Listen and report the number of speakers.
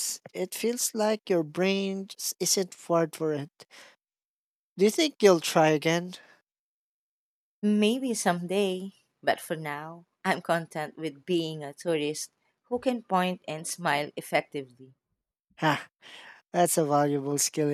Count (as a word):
two